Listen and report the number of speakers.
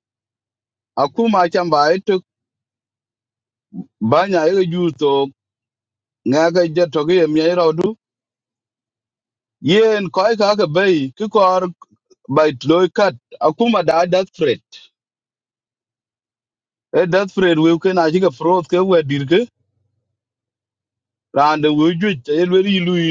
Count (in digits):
1